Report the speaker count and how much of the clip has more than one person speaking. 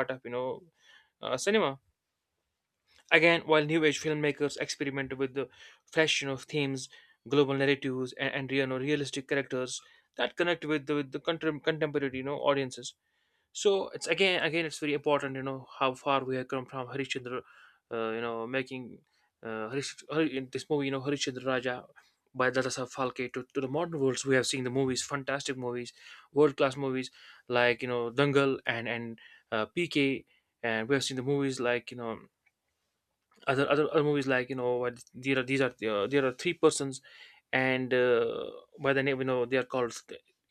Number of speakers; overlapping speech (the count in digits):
1, no overlap